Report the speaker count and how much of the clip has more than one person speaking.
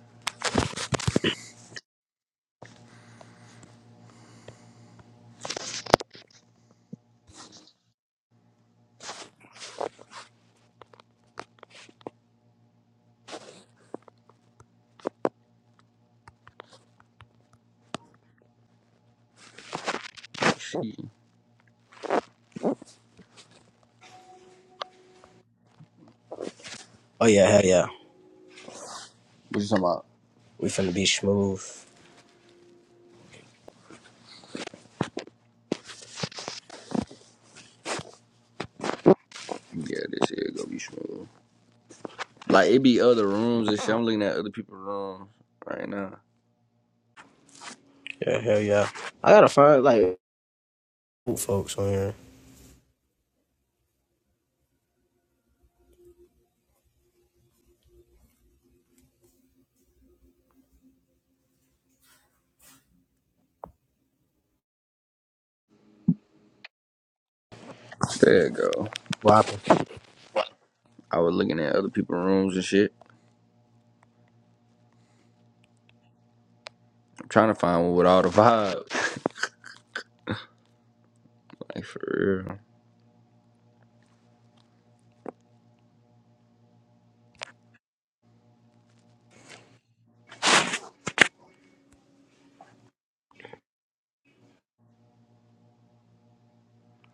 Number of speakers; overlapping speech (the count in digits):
2, no overlap